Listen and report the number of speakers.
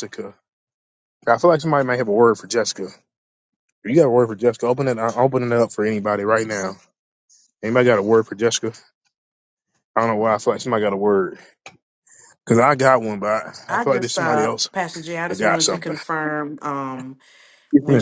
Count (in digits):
2